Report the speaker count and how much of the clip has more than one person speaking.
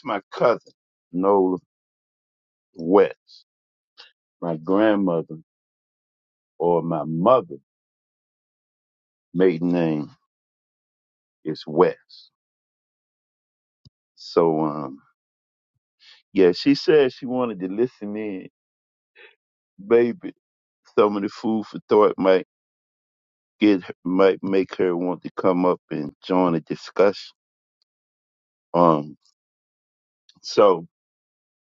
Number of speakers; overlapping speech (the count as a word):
one, no overlap